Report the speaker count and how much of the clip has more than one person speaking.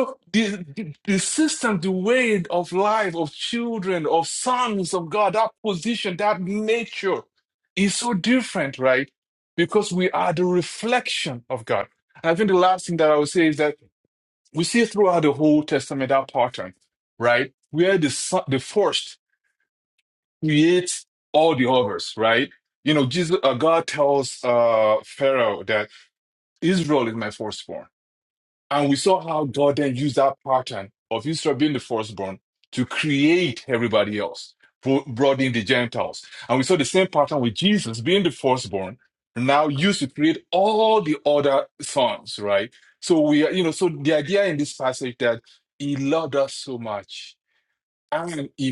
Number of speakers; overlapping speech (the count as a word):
one, no overlap